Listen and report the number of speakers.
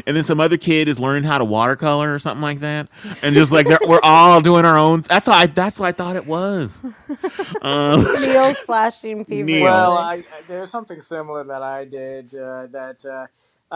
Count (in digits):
3